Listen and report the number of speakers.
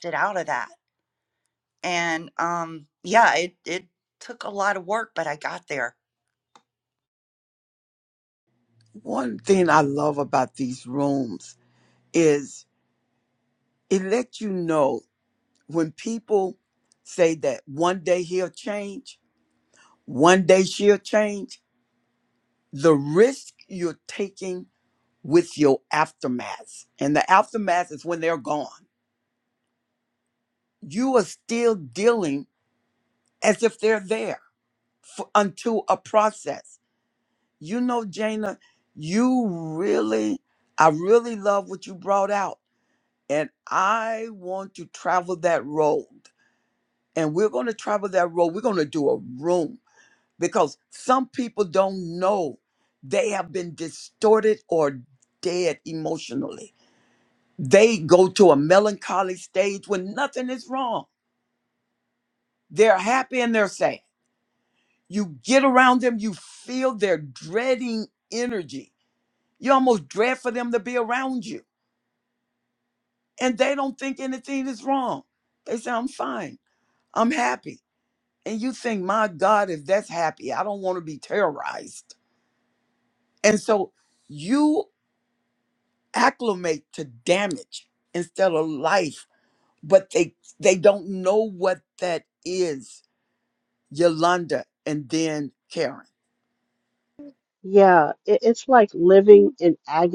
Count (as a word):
three